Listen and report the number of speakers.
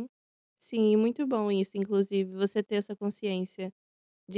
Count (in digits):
1